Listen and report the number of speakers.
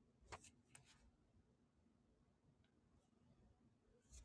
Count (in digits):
0